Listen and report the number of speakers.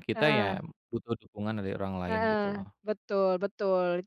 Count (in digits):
2